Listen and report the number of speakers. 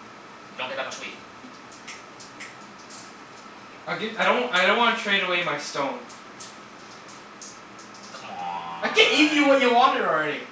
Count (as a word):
two